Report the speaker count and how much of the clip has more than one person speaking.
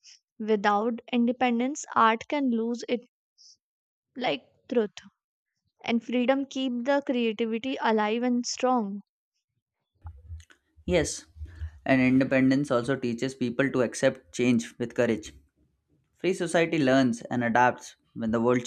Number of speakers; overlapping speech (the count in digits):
2, no overlap